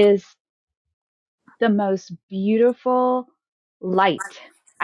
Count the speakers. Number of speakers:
1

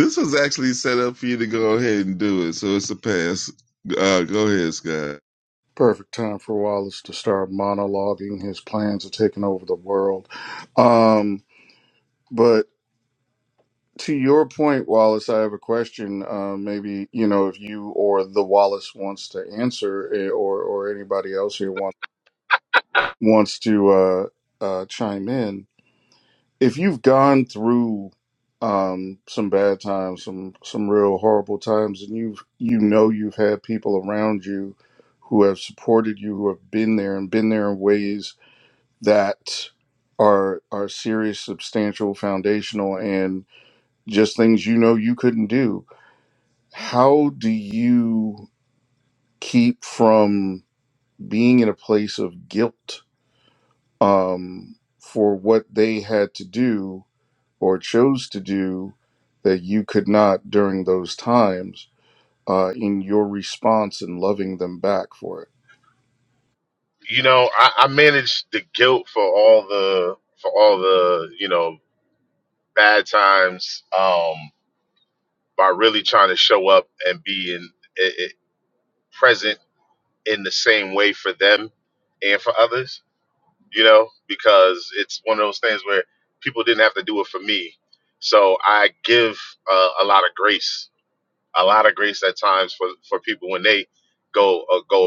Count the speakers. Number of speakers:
3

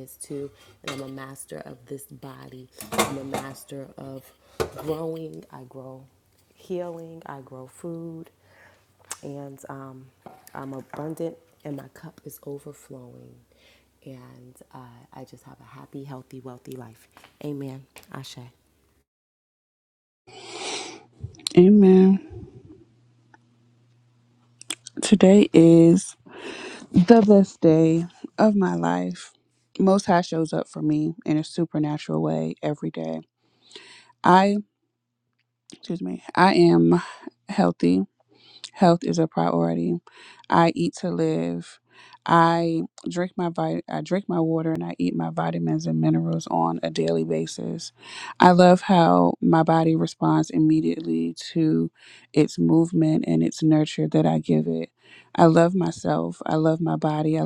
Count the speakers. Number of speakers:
2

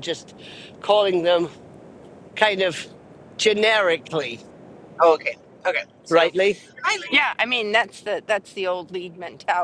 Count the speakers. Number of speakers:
3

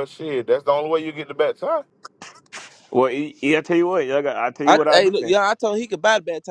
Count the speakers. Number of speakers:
3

